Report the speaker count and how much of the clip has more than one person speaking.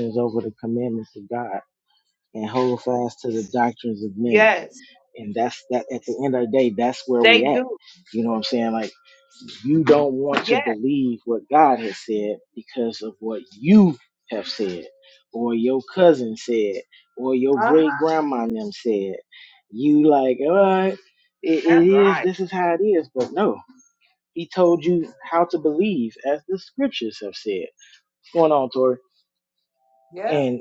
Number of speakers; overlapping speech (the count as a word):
two, about 7%